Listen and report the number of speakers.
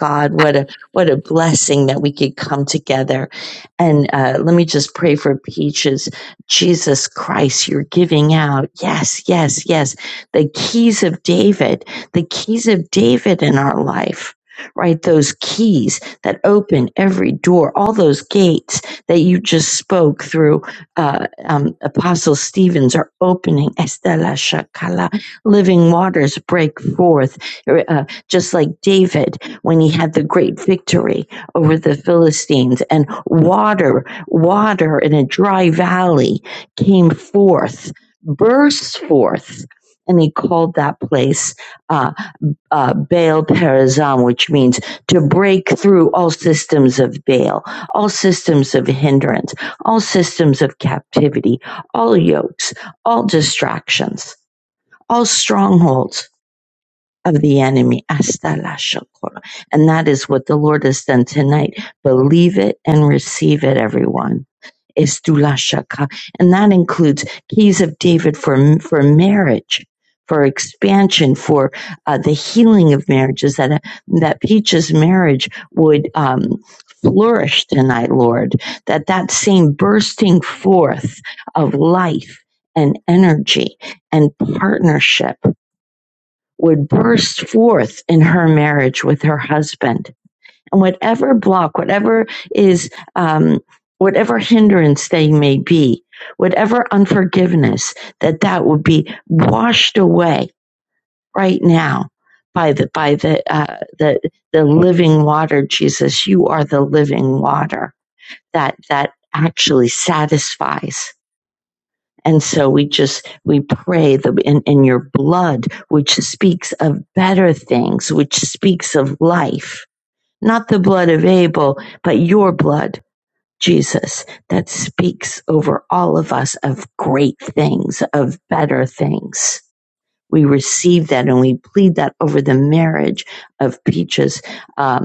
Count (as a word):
one